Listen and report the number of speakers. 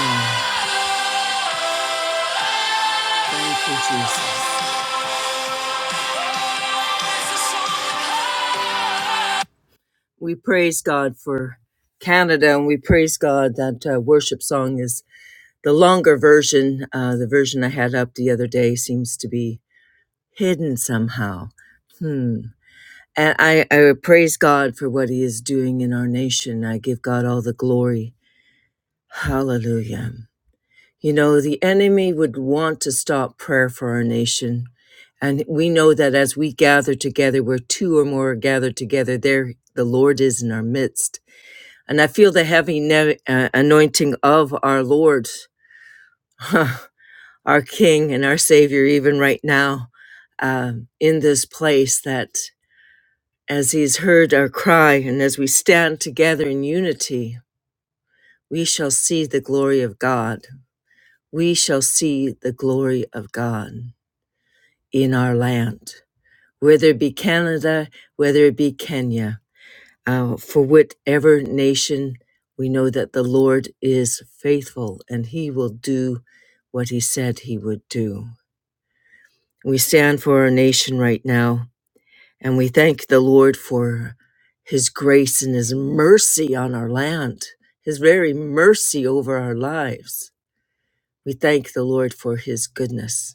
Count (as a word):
one